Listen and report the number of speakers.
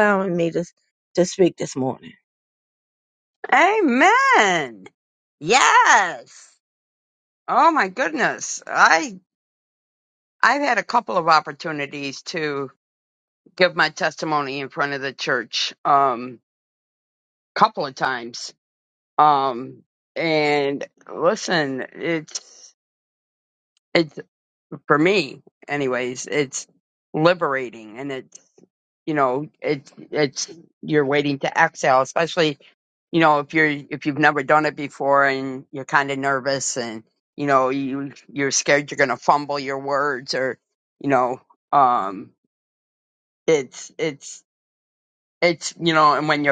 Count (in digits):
2